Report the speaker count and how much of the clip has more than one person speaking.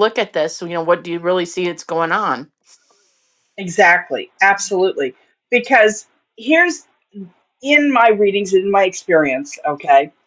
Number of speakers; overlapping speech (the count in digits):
2, no overlap